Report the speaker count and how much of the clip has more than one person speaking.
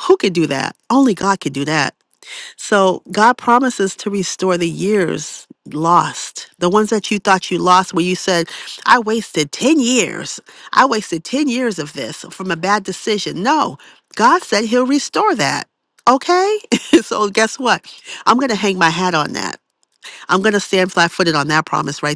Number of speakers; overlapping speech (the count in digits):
1, no overlap